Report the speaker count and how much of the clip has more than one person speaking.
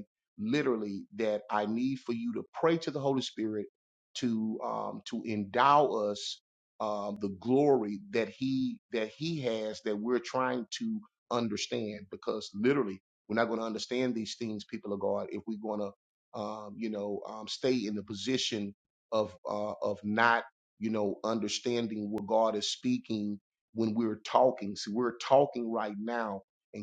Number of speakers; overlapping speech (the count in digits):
1, no overlap